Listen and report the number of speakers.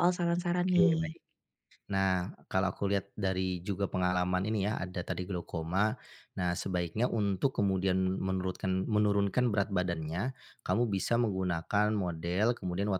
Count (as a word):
two